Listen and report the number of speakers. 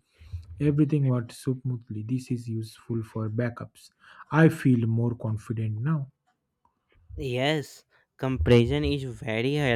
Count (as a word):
two